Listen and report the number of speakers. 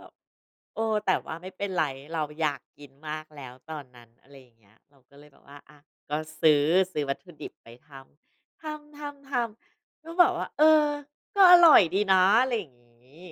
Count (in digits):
1